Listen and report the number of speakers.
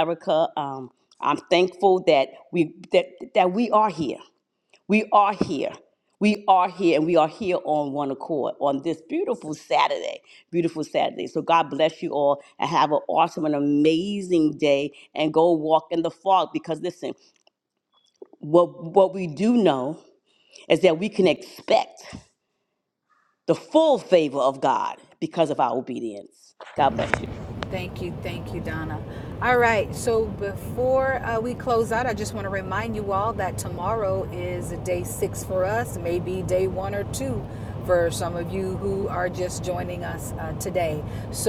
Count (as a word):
two